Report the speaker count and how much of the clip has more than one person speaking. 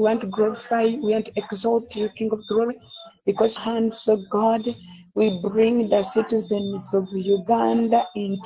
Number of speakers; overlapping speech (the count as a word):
one, no overlap